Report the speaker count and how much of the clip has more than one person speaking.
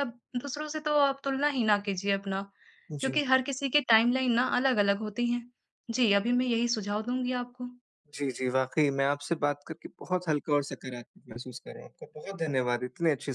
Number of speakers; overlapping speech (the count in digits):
2, about 1%